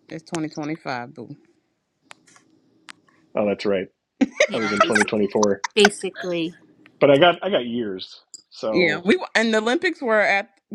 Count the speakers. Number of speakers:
three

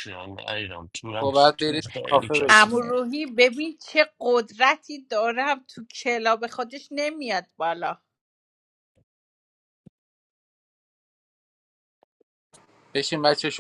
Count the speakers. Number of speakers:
three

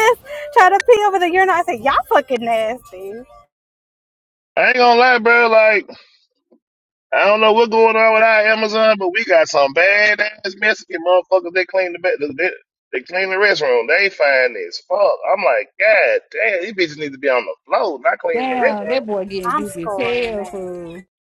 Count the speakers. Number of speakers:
three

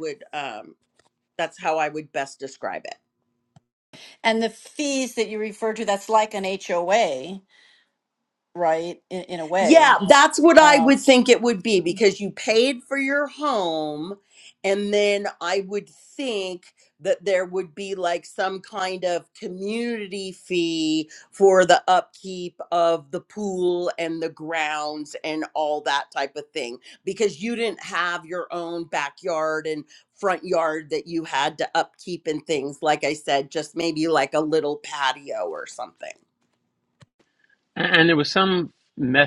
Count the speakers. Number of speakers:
three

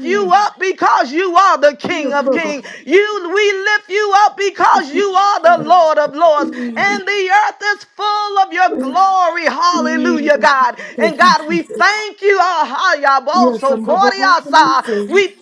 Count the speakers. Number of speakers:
two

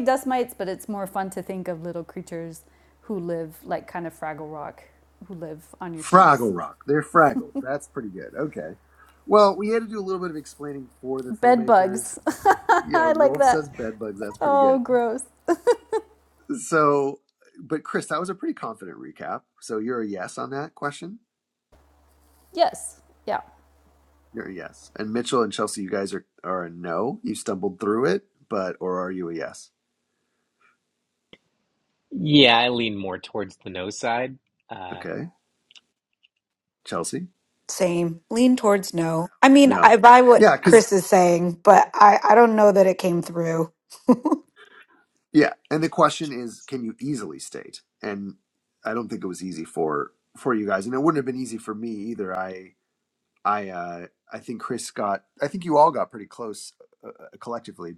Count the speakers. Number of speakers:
four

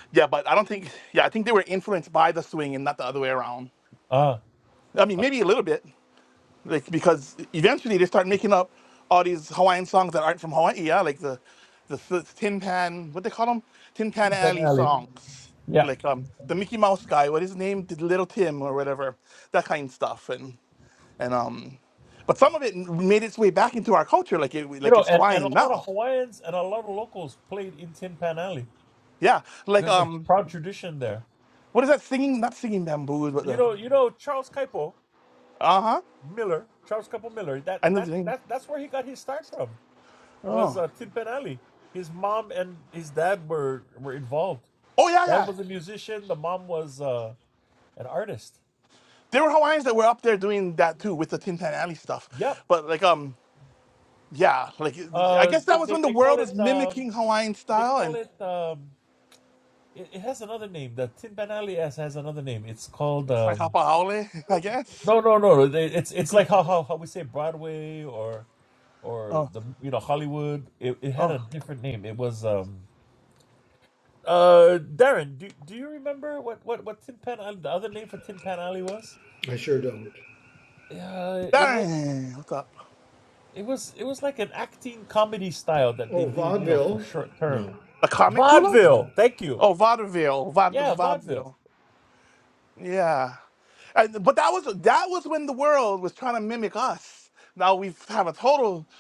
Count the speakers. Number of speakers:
three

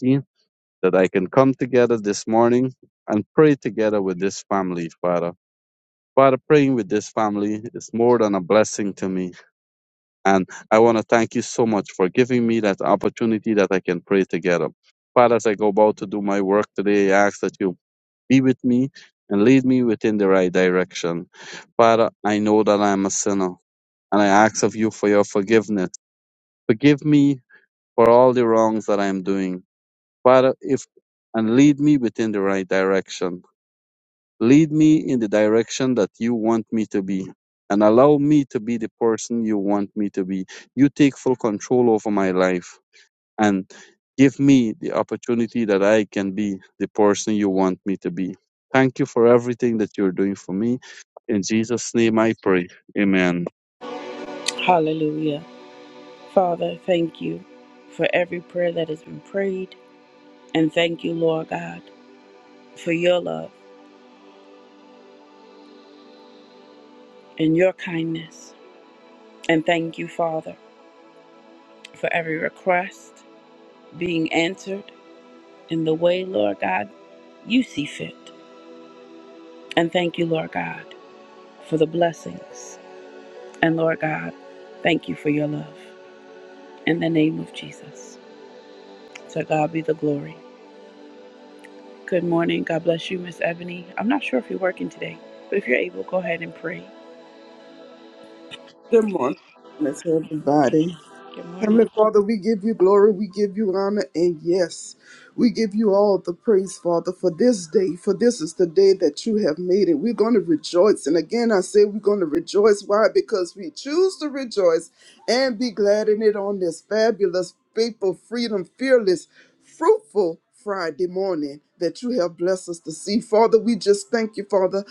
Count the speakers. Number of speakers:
three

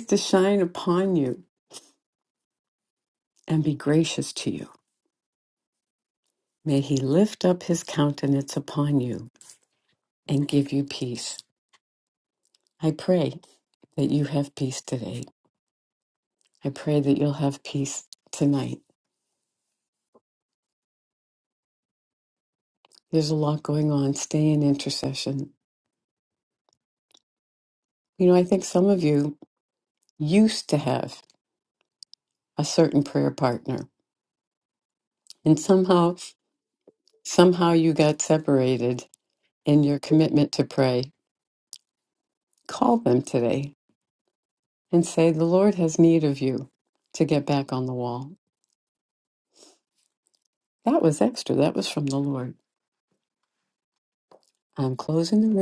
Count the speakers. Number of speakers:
one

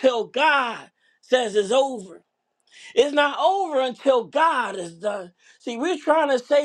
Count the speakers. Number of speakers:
one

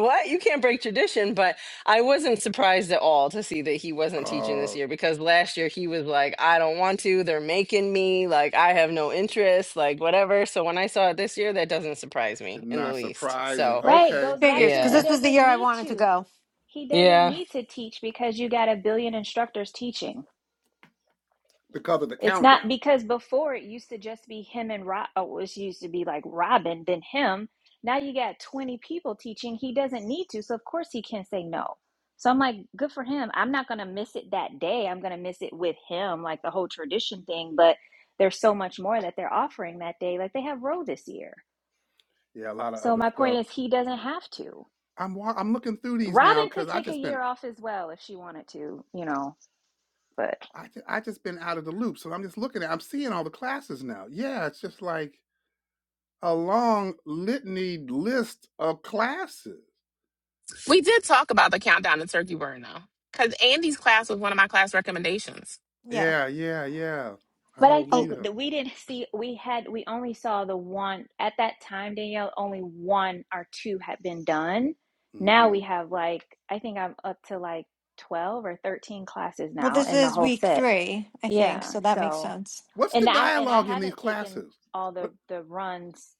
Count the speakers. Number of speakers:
five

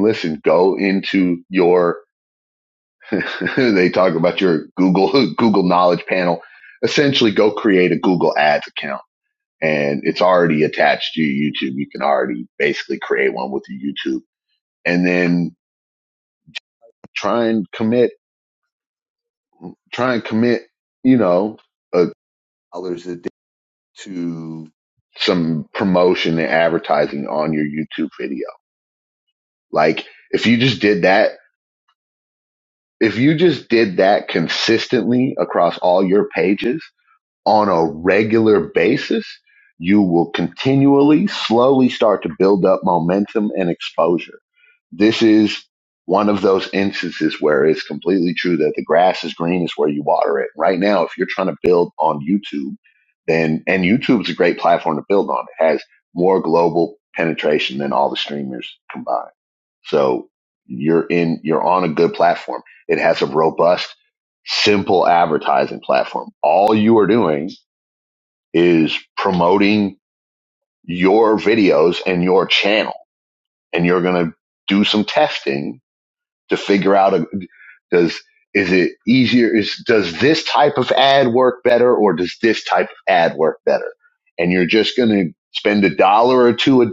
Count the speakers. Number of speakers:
one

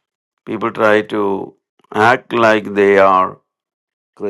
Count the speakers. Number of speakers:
one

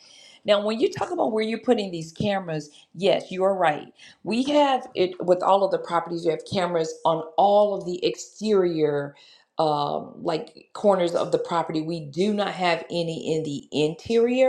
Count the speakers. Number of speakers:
one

